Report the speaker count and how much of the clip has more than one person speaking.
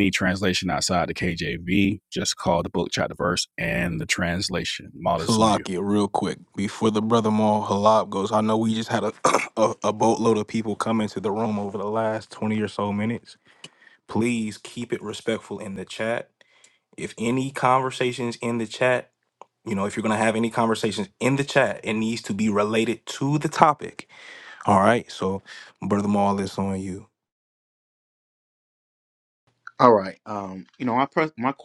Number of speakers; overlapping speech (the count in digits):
3, about 2%